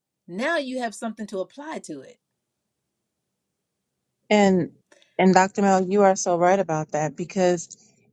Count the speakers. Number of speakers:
2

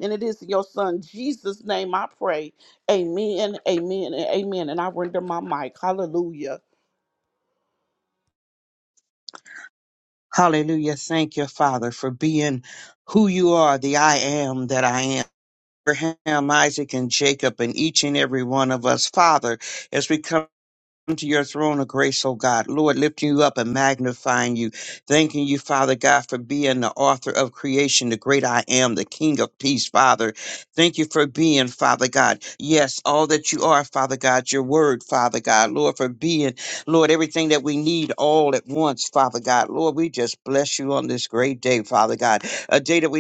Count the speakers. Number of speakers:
2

